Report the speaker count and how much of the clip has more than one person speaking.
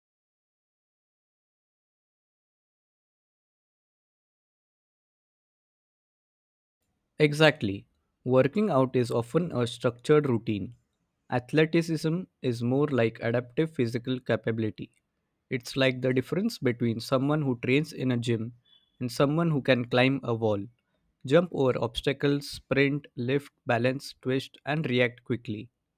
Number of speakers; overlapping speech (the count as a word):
one, no overlap